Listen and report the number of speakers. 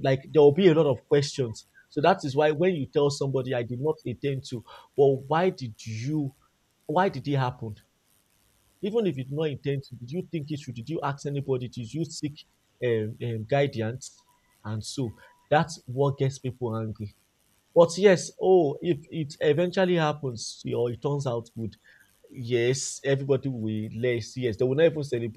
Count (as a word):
one